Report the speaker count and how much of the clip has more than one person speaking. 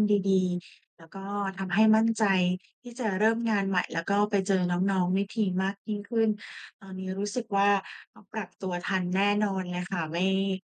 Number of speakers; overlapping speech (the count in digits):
1, no overlap